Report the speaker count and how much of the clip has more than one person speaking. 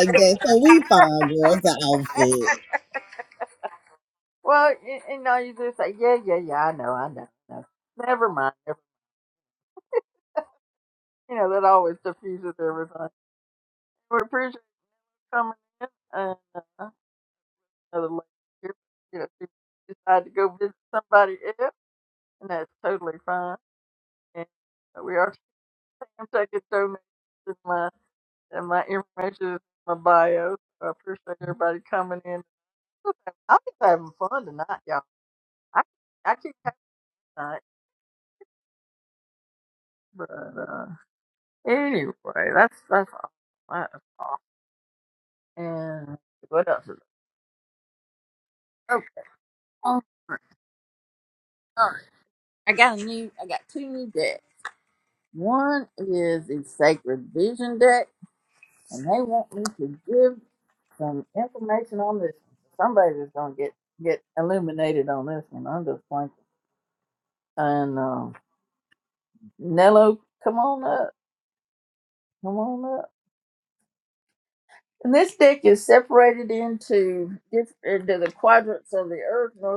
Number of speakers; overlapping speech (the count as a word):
two, no overlap